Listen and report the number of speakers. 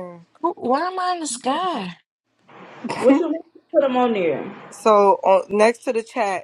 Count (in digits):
3